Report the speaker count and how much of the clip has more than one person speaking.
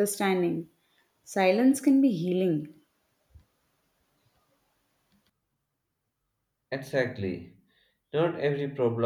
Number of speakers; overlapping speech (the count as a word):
two, no overlap